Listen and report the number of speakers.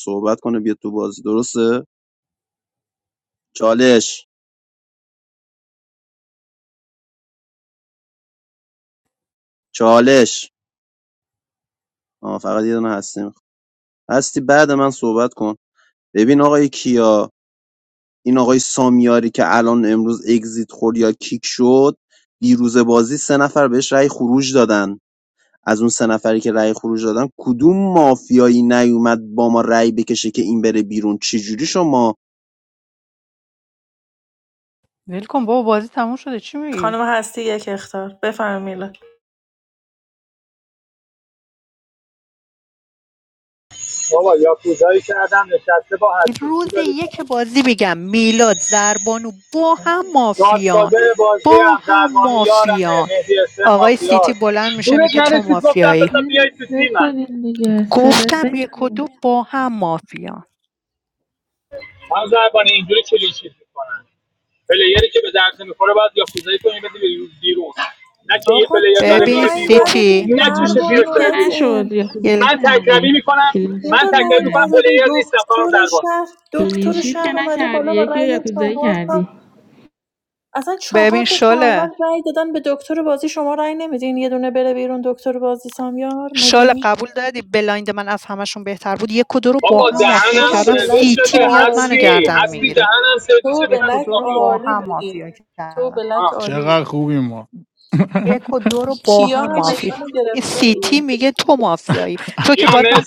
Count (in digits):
6